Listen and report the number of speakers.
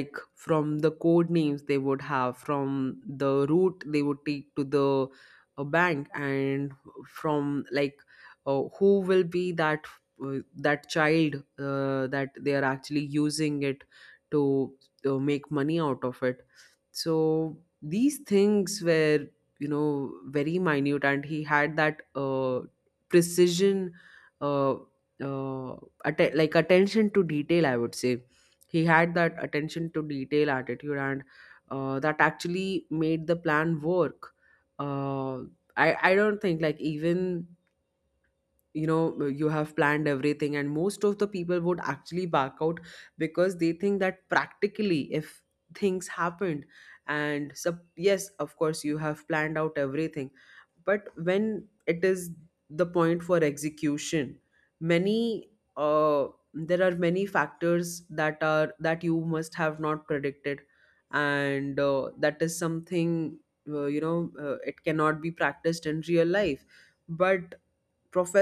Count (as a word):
one